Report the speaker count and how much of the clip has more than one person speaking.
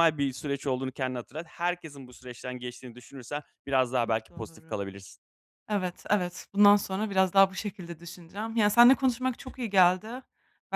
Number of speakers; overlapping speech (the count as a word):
two, about 6%